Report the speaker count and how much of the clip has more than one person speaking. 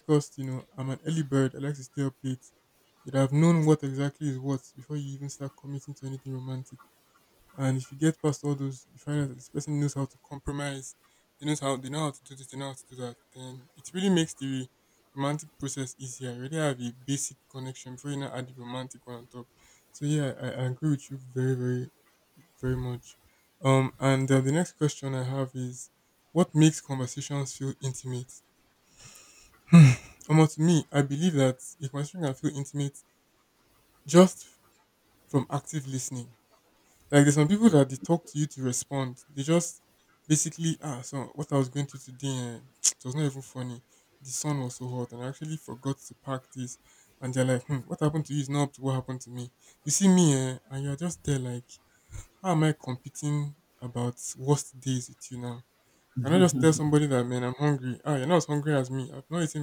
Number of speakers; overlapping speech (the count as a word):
one, no overlap